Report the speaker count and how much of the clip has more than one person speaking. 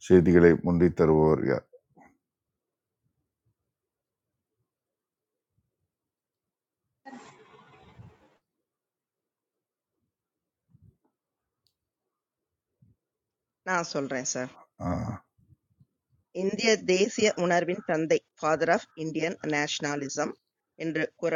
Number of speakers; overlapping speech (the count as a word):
two, no overlap